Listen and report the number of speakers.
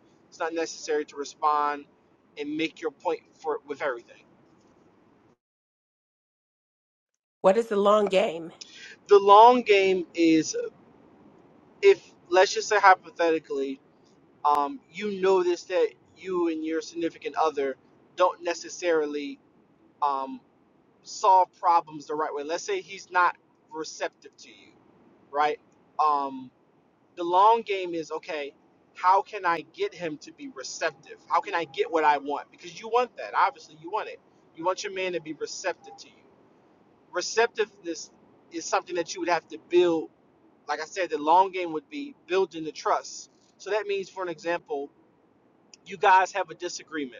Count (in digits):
2